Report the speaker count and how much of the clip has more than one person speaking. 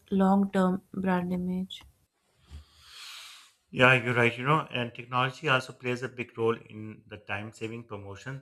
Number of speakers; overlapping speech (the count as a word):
two, no overlap